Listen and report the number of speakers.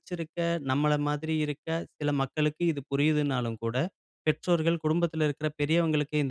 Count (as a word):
one